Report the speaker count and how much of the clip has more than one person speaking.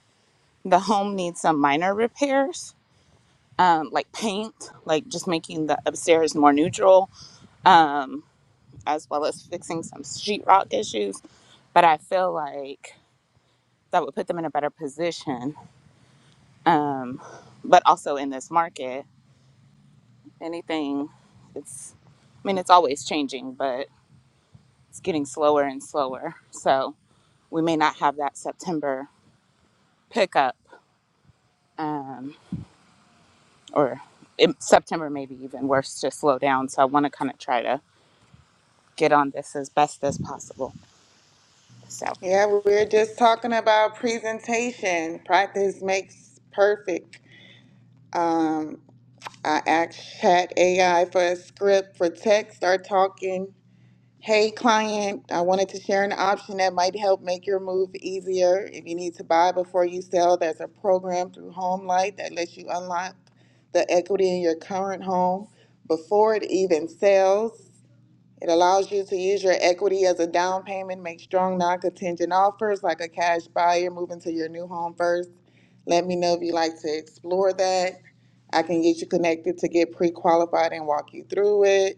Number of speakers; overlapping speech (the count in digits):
2, no overlap